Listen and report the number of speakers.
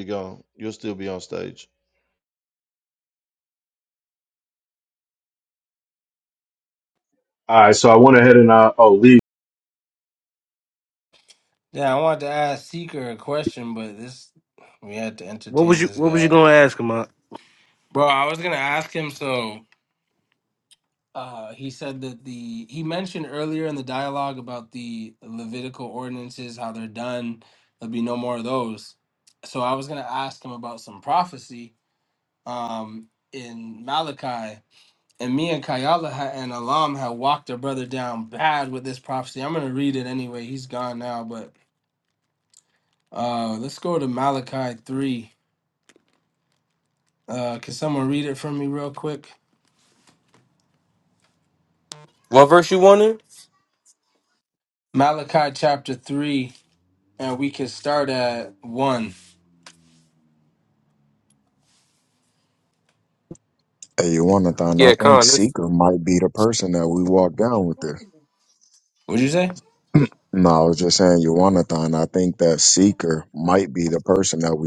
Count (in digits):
6